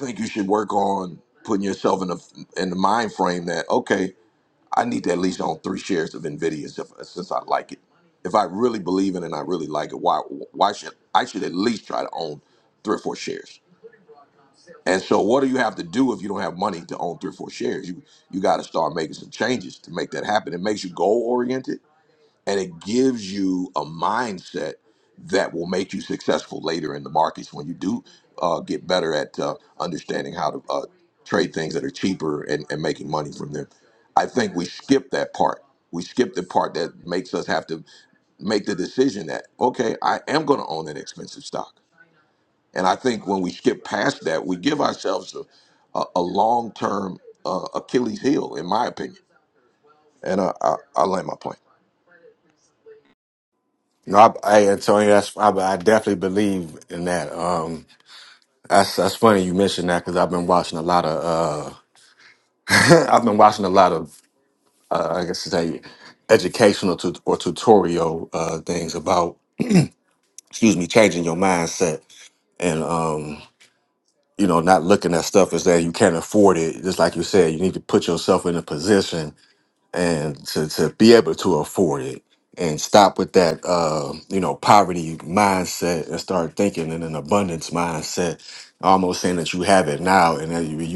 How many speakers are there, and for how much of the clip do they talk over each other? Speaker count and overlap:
2, no overlap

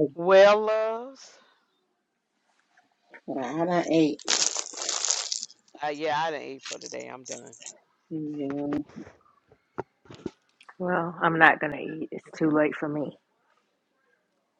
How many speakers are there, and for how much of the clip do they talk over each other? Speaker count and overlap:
3, no overlap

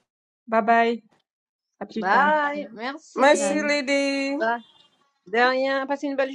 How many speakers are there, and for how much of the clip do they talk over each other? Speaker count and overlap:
3, about 13%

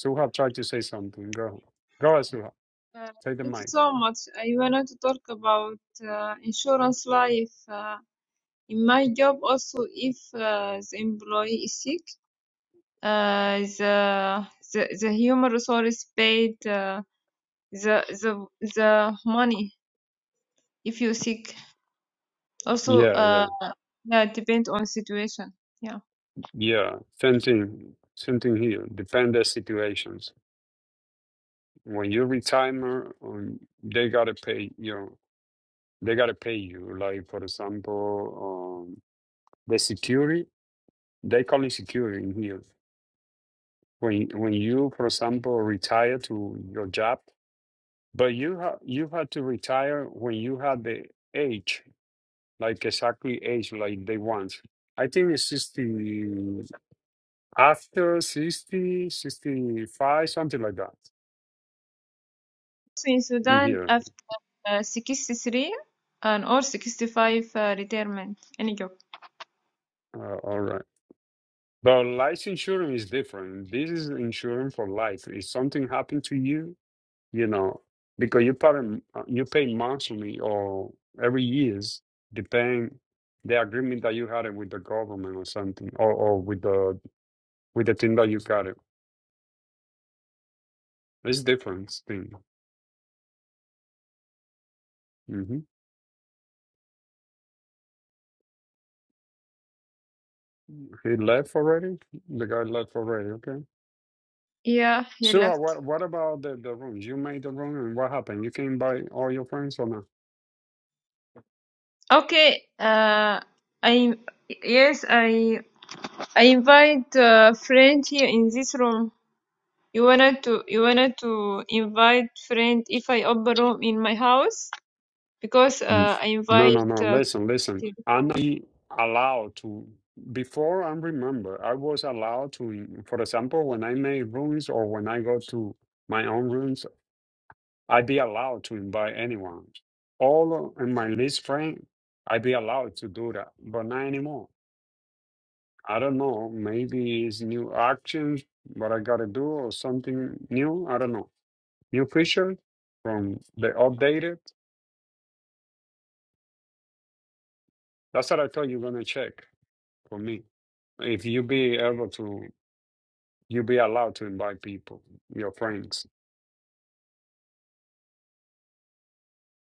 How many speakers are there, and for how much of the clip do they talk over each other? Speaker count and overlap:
2, about 2%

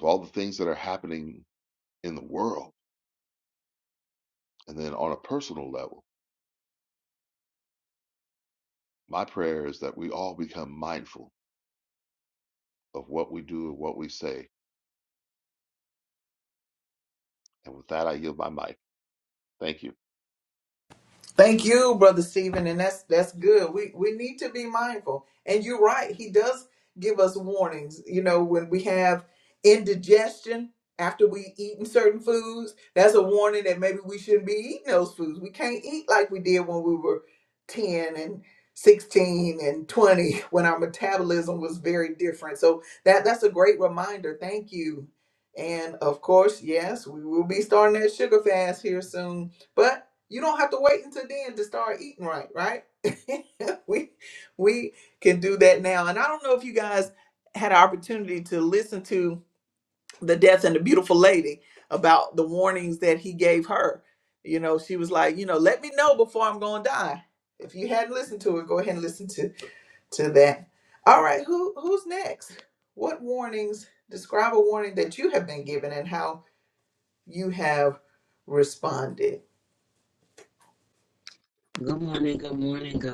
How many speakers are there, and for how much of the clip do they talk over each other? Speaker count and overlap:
3, no overlap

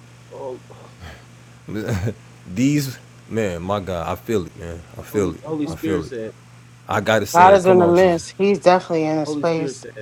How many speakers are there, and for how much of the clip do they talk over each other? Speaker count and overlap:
3, about 22%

